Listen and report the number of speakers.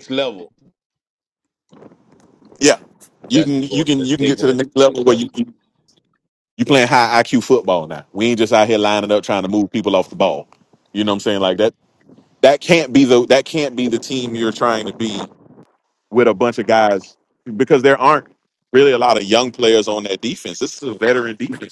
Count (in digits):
2